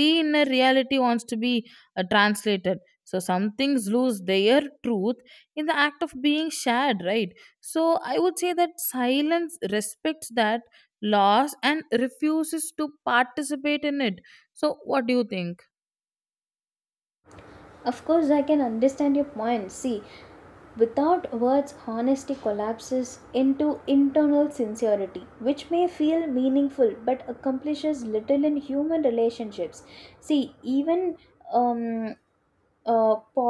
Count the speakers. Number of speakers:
two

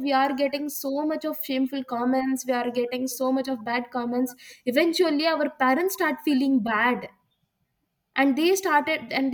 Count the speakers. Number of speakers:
one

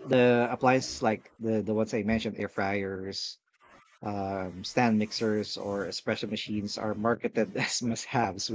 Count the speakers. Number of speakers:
one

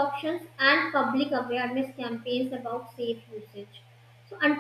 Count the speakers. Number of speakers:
one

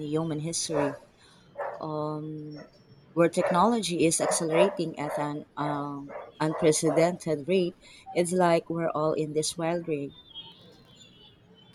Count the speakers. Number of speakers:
one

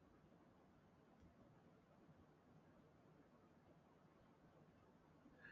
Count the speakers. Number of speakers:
zero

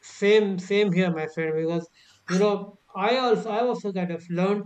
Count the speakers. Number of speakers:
one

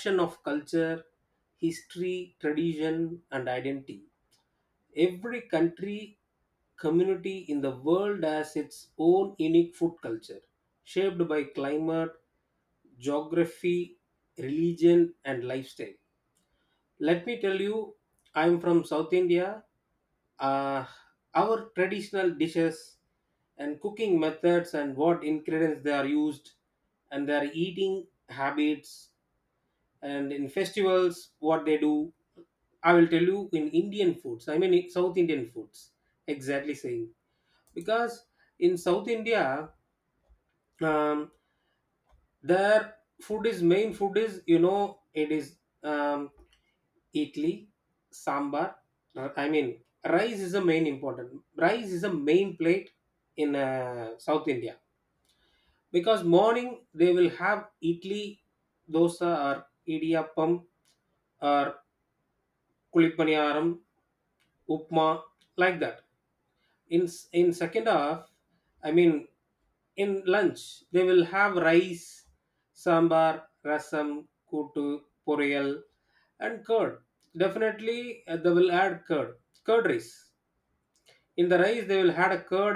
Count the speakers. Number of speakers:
one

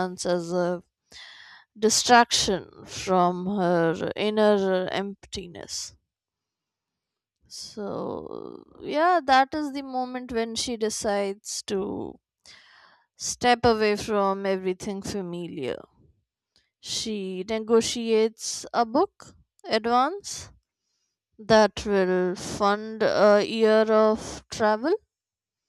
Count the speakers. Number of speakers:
one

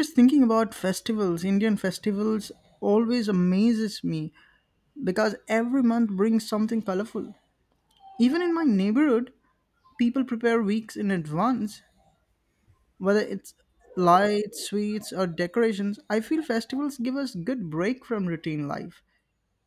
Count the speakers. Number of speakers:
one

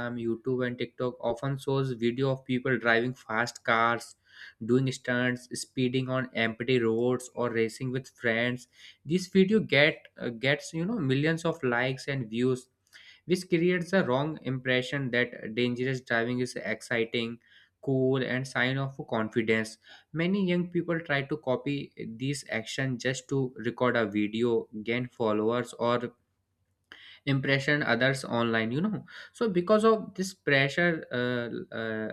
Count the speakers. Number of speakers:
one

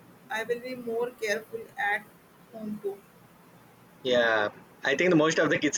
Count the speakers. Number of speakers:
two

